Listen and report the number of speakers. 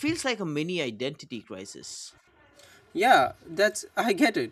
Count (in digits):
2